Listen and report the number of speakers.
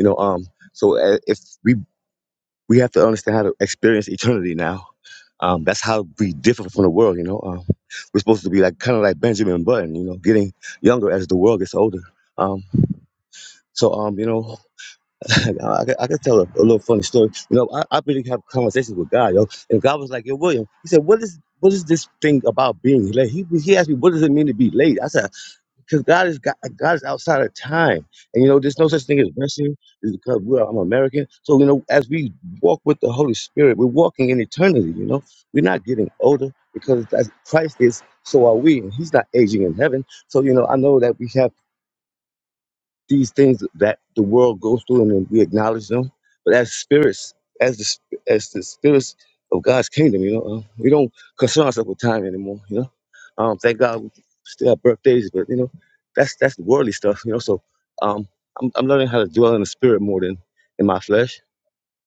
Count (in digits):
1